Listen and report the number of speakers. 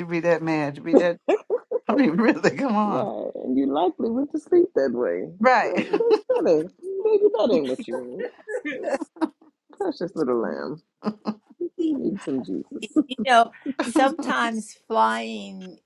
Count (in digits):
3